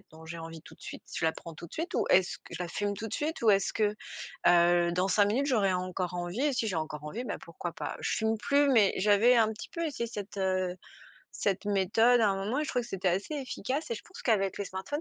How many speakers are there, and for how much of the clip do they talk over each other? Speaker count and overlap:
1, no overlap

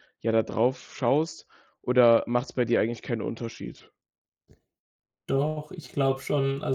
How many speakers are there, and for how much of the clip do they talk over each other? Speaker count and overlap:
2, no overlap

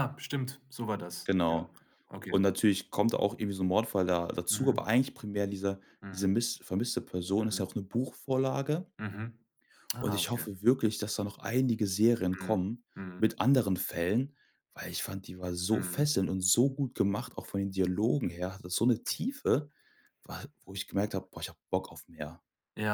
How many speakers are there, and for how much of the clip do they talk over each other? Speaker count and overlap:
2, about 10%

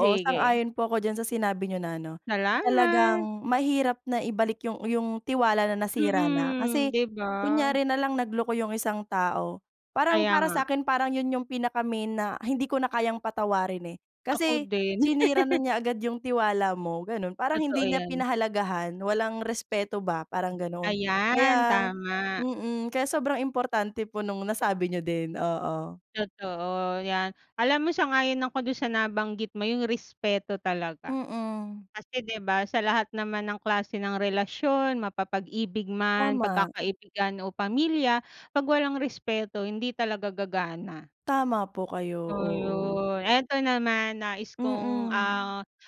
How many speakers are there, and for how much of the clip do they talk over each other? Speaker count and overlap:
2, about 15%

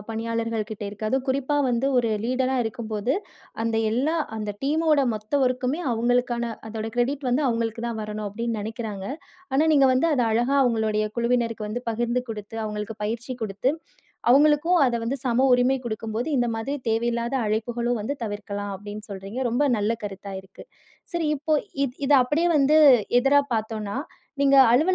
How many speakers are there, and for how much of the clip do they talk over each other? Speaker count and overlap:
1, no overlap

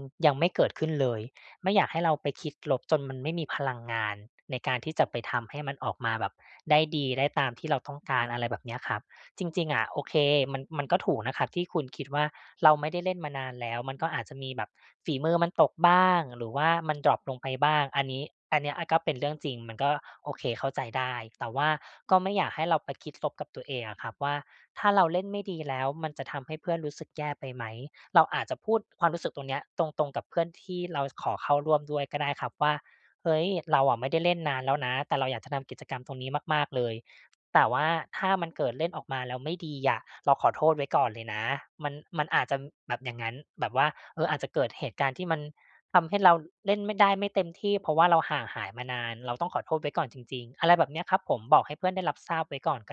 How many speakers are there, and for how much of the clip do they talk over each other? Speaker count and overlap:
1, no overlap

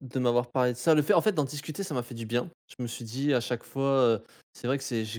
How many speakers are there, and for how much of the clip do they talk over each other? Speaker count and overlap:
1, no overlap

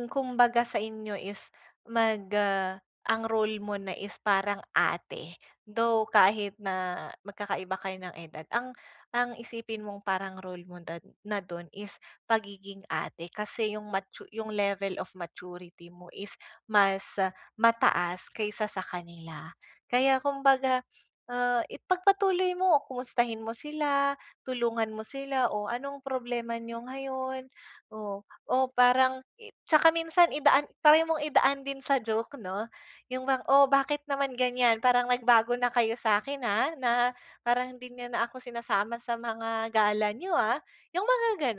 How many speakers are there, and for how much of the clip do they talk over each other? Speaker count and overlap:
1, no overlap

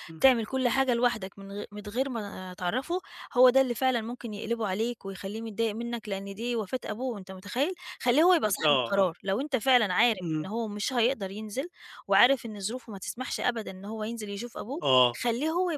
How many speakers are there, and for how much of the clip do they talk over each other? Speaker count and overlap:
2, about 5%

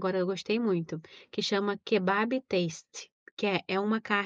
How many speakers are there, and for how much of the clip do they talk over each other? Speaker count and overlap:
1, no overlap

